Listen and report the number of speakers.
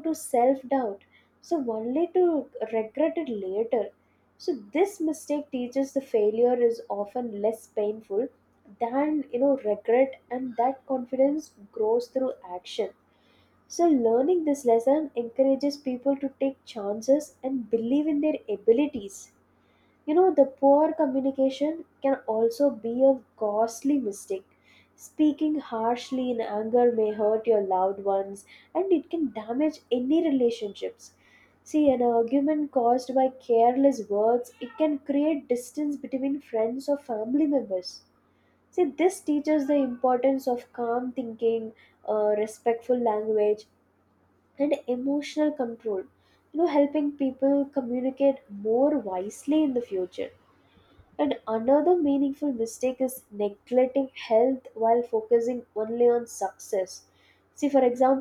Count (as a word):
one